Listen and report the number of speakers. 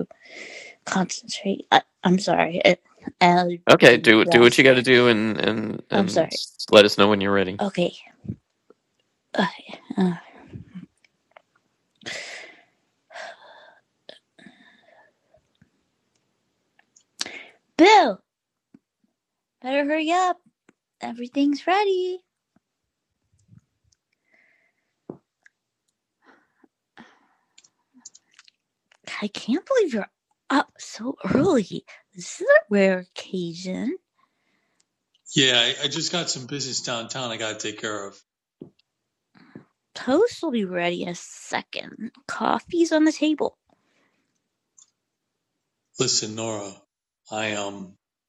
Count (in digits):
3